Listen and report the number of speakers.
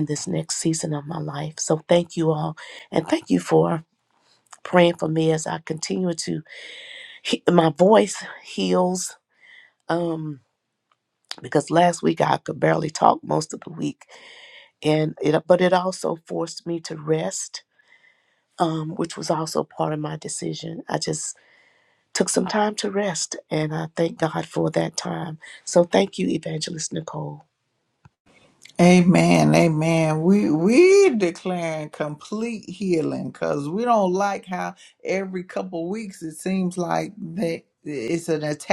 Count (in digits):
2